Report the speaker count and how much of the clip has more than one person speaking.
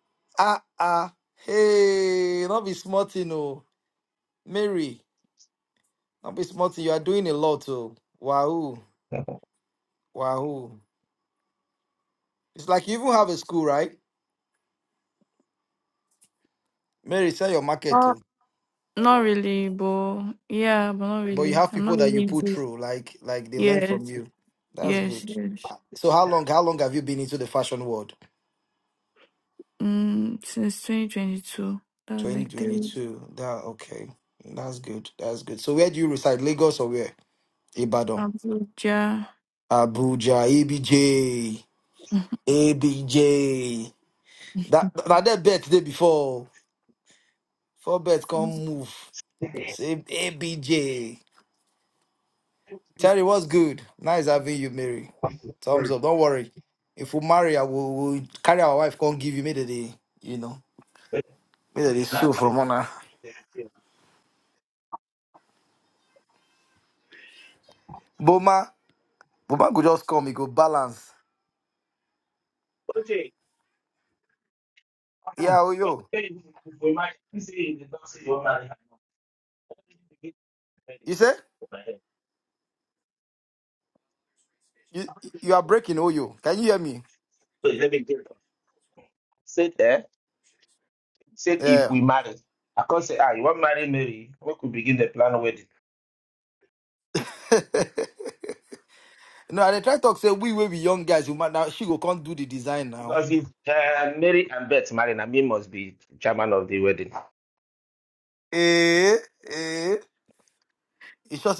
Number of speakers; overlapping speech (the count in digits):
3, about 4%